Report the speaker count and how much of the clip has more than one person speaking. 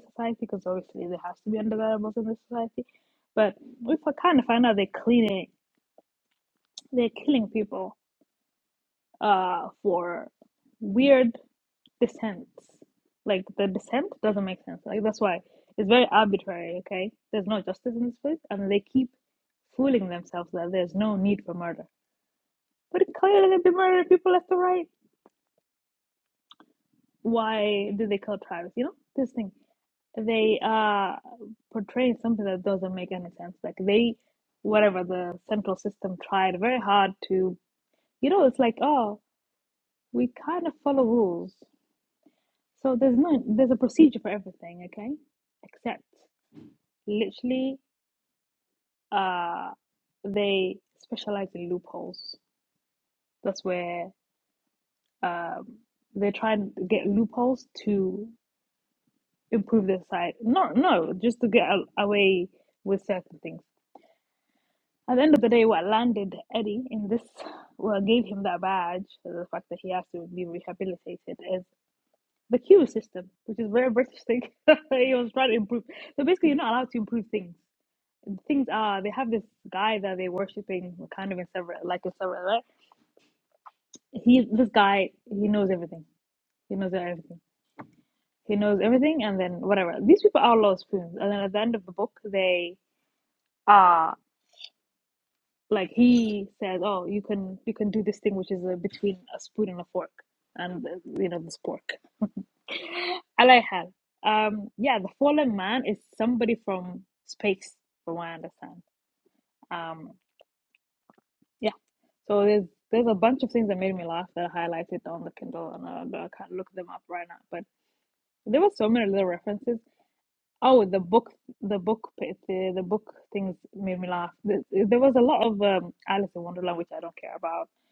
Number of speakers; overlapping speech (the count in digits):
1, no overlap